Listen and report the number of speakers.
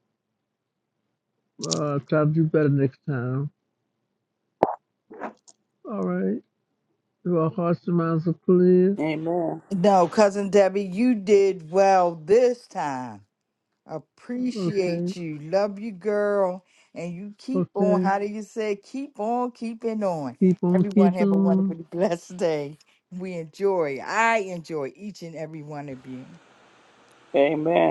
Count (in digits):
3